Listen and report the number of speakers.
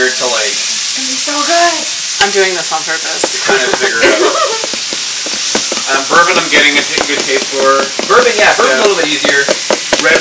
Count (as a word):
four